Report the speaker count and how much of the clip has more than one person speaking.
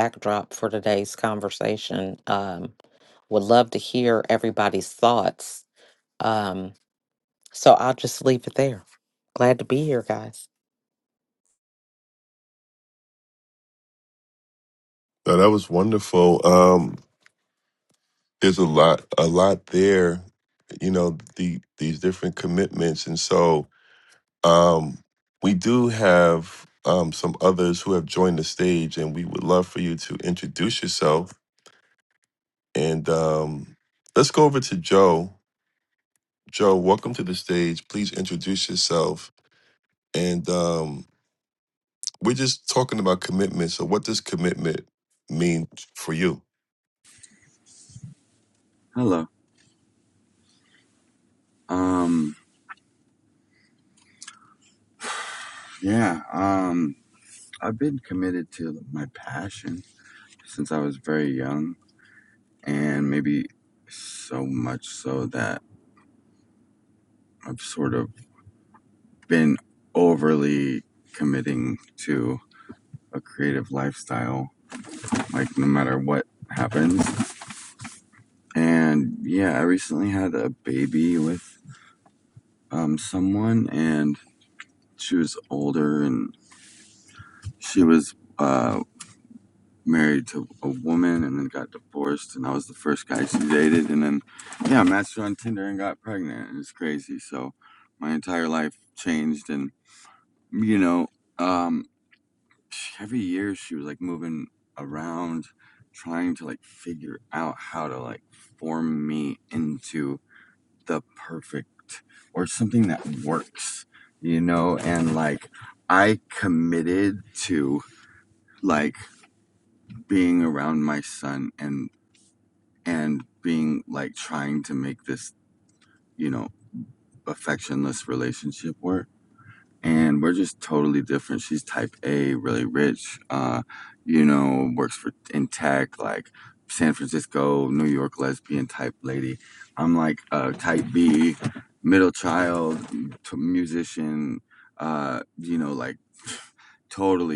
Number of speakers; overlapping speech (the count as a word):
three, no overlap